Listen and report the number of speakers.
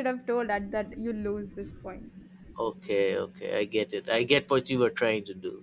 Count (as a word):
two